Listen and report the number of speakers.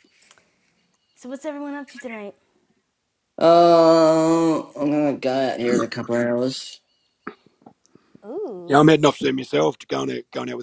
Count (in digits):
3